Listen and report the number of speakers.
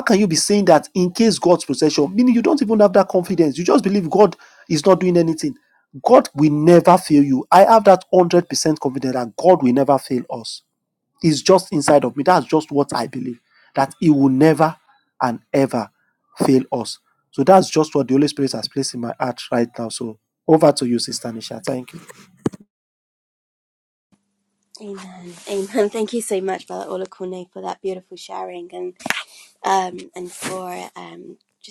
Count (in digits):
2